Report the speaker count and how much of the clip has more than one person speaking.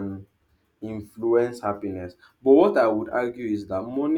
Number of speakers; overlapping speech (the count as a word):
one, no overlap